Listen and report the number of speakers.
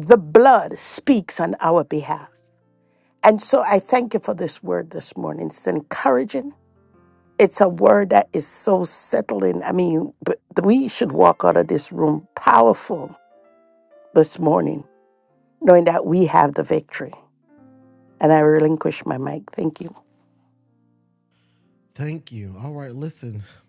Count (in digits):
2